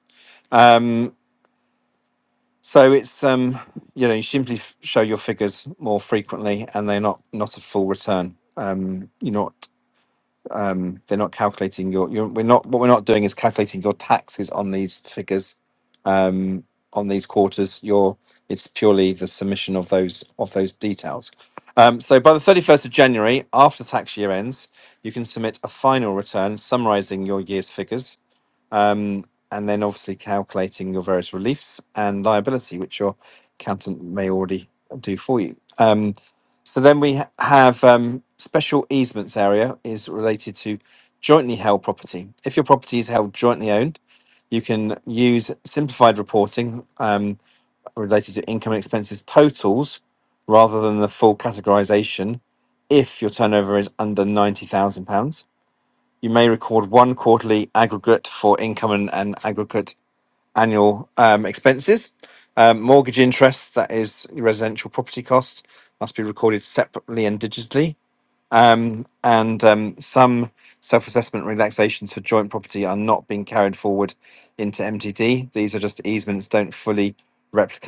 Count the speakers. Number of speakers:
one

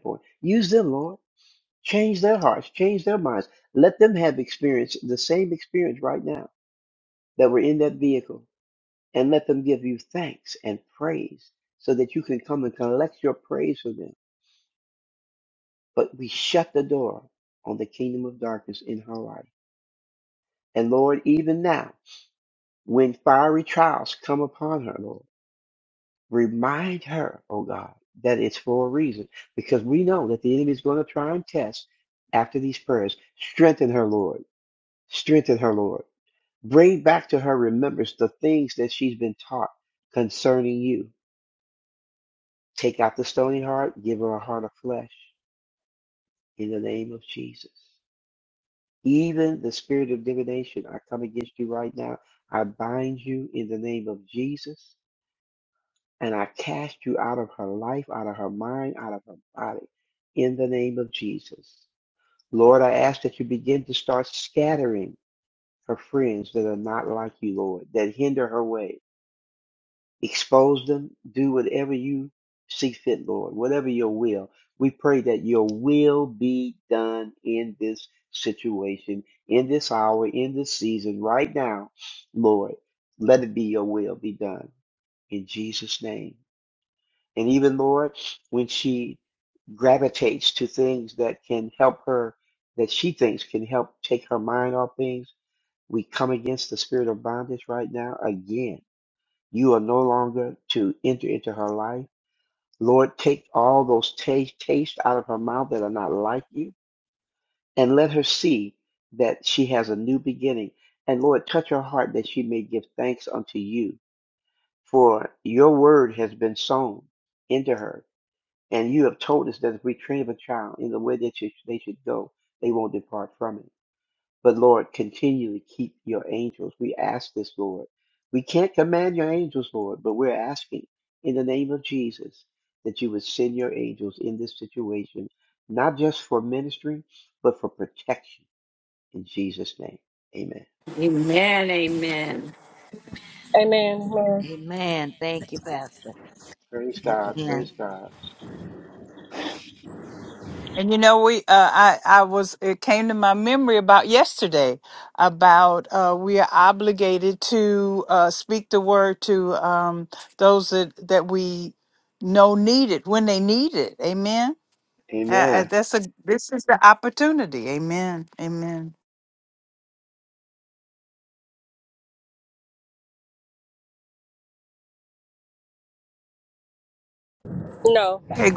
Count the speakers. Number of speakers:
five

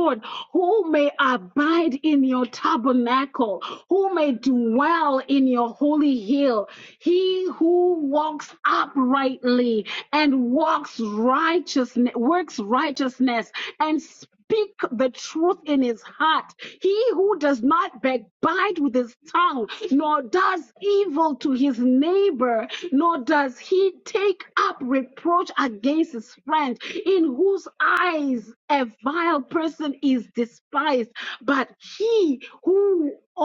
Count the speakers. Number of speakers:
one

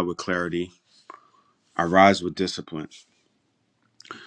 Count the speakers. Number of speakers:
one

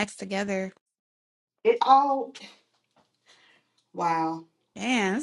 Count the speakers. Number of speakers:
two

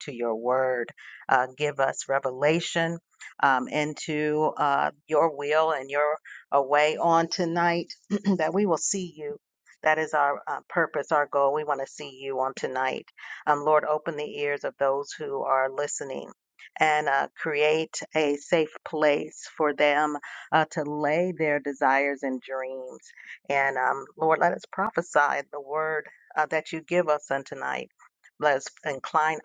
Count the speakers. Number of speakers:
one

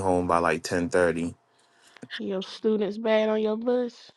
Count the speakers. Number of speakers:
two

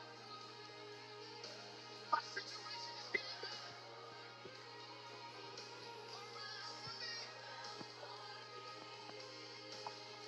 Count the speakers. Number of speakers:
zero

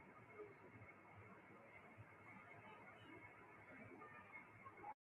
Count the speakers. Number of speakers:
zero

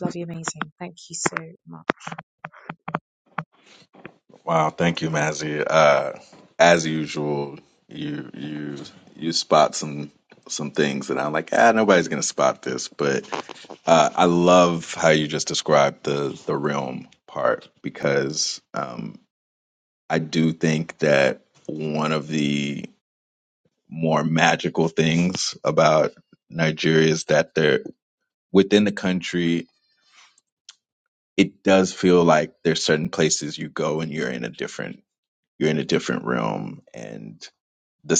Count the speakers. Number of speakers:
two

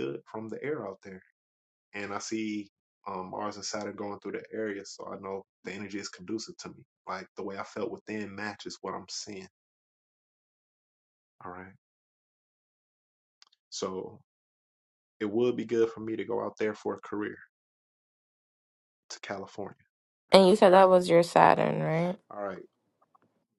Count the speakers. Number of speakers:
two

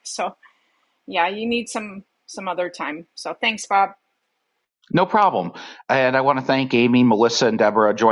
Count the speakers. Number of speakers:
two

